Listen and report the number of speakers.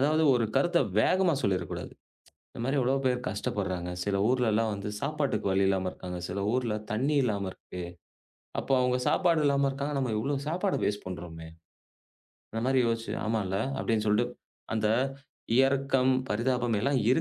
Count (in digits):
1